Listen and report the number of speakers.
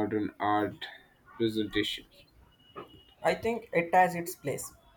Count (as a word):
two